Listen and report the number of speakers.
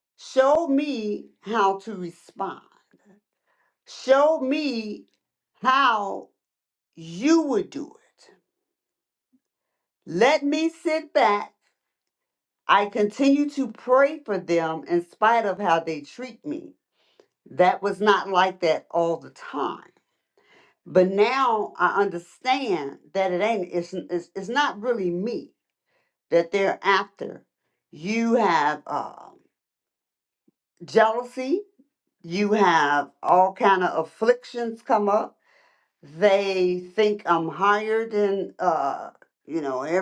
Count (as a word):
one